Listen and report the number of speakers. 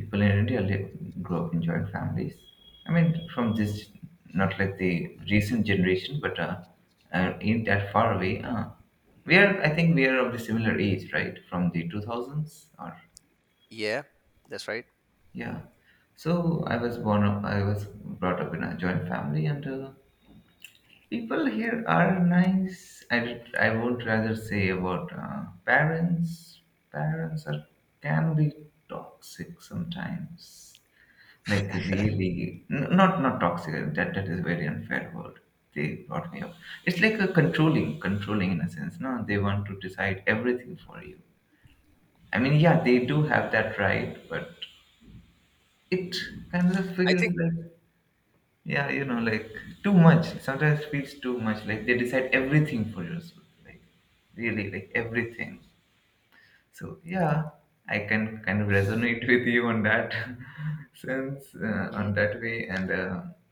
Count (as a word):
two